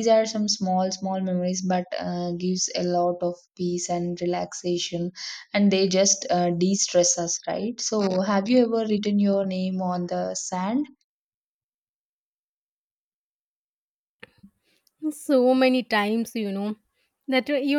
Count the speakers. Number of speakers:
2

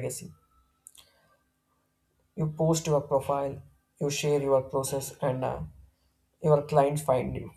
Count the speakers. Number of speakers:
1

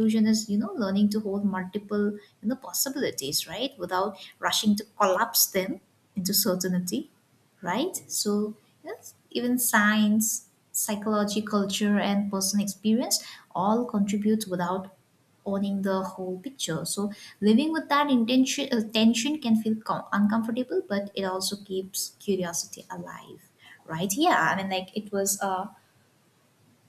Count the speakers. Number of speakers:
1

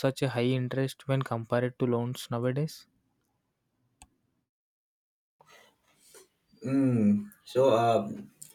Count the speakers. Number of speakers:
2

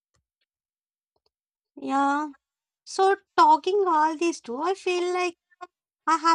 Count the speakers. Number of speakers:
1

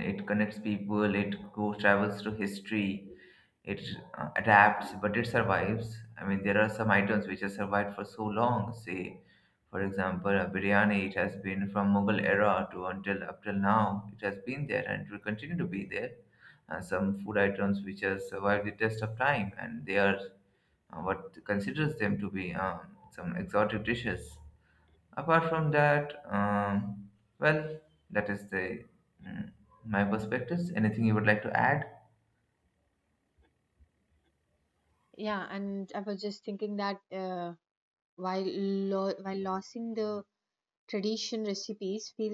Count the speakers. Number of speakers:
2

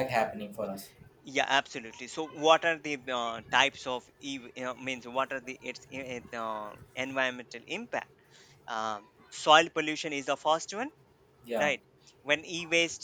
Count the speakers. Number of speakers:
2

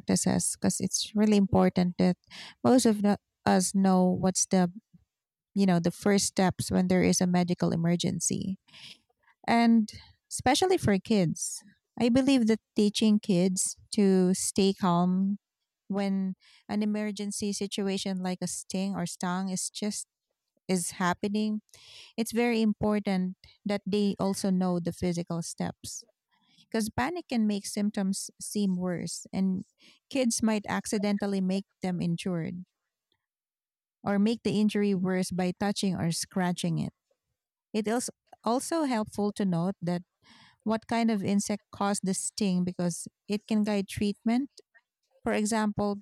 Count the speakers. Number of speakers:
1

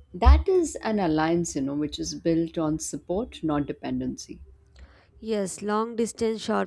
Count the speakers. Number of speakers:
2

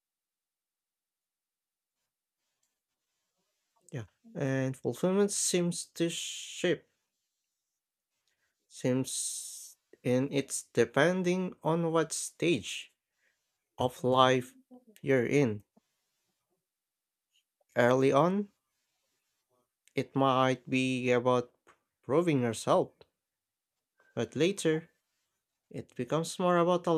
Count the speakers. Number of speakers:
1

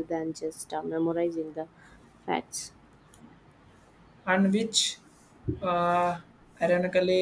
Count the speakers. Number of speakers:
2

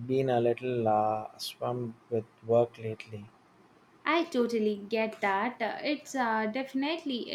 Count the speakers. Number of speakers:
2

